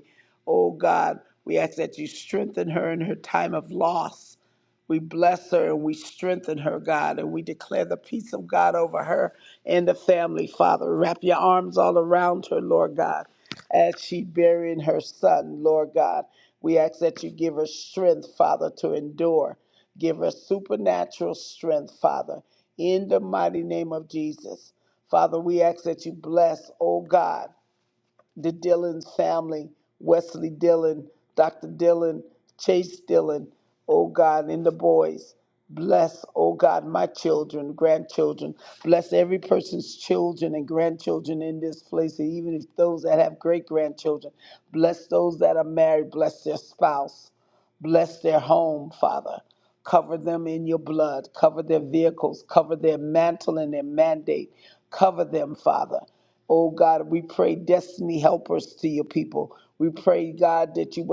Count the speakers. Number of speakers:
1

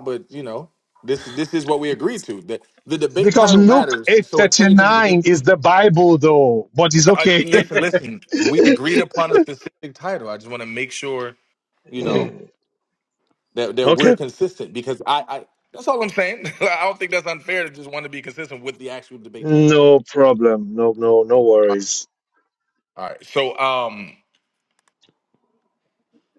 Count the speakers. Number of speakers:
2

